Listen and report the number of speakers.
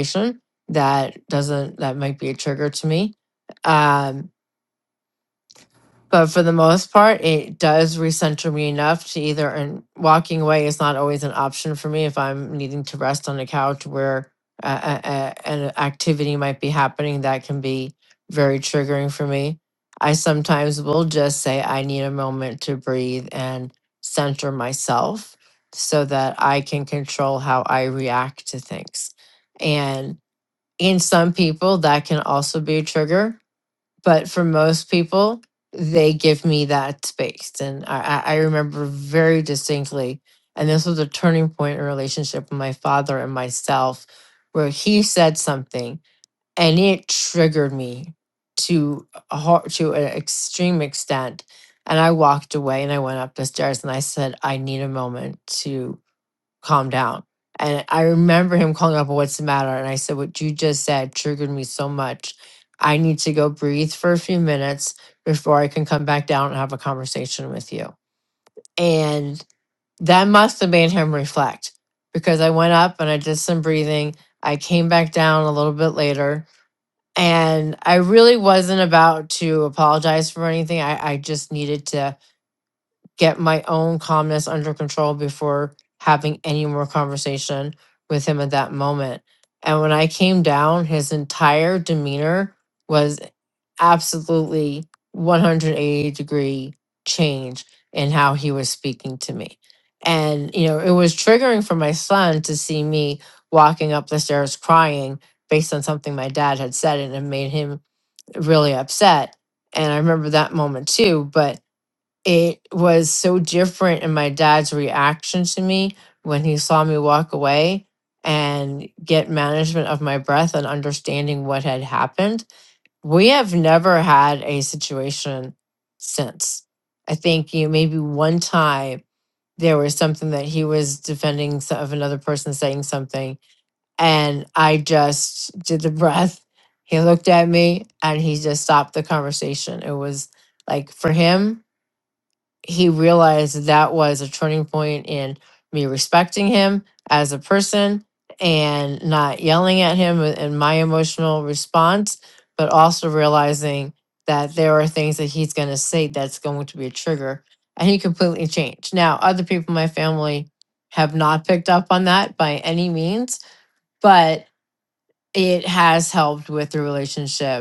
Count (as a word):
one